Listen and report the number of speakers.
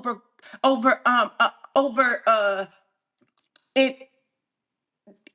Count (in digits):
1